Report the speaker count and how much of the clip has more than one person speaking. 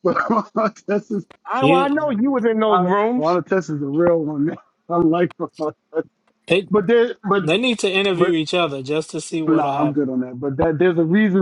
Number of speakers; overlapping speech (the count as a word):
three, about 13%